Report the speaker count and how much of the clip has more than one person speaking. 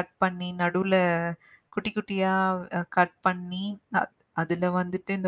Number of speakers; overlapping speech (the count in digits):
1, no overlap